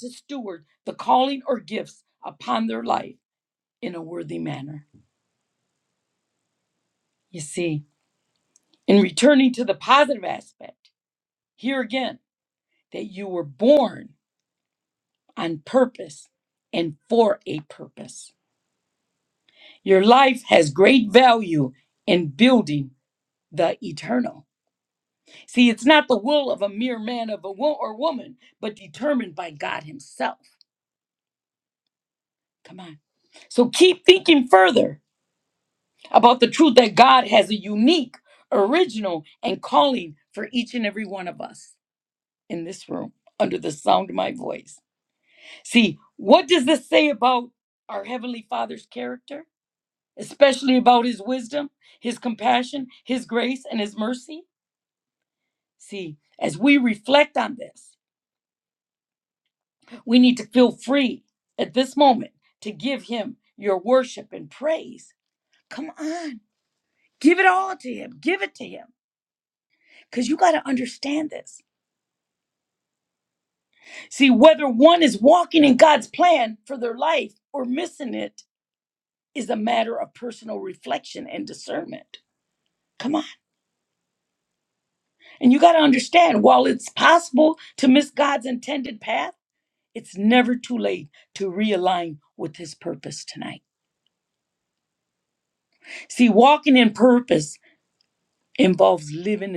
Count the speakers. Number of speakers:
one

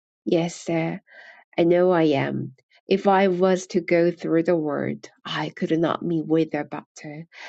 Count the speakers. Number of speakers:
one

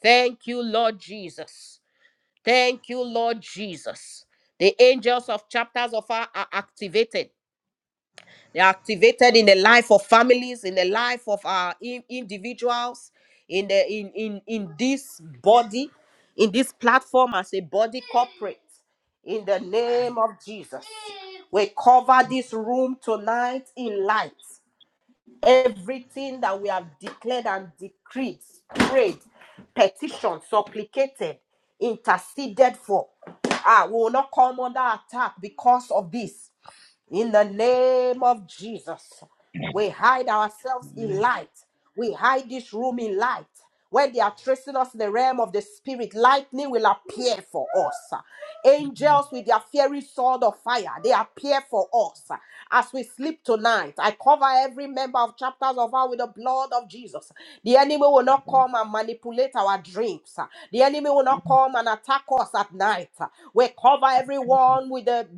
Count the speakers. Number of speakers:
one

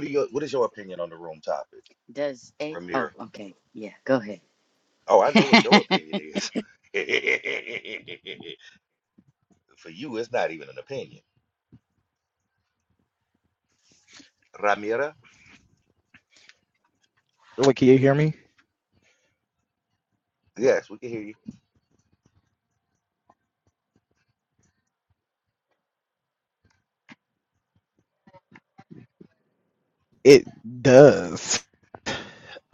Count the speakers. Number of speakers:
three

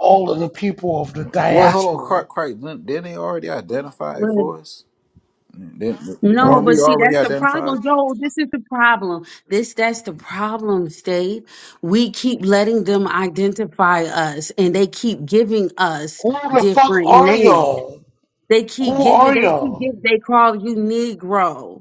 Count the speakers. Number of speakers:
three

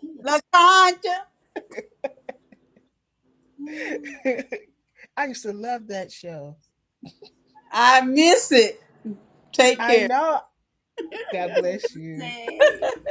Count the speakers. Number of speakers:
three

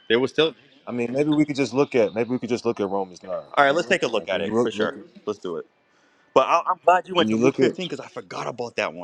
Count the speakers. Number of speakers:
two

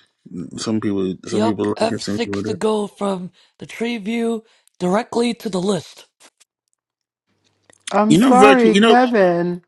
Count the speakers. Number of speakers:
three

